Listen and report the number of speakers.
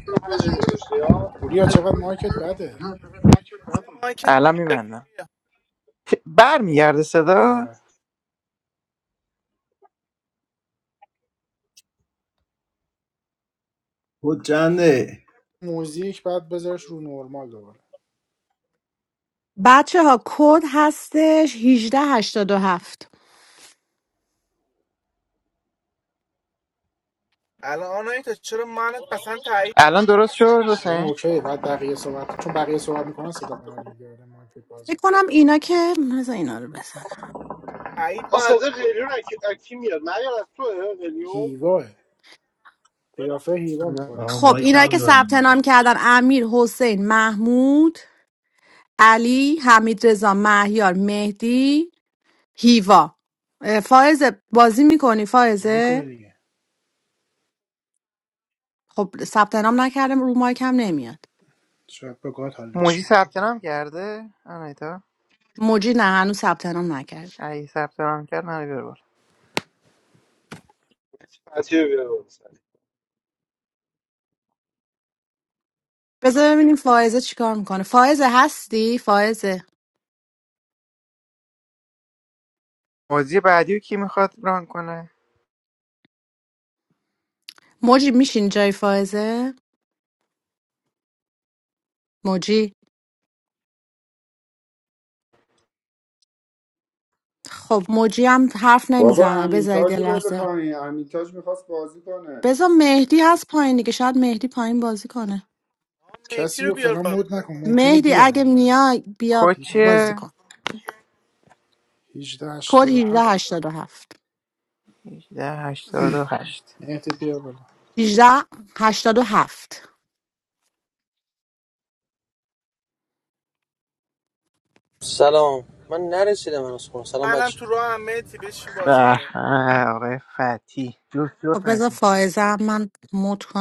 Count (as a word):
eight